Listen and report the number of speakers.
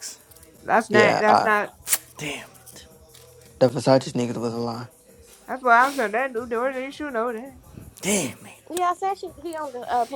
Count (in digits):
4